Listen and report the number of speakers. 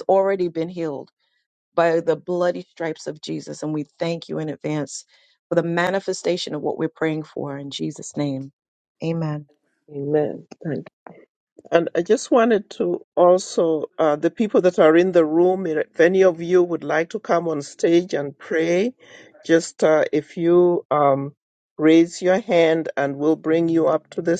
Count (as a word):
two